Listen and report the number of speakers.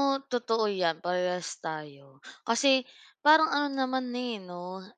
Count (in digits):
1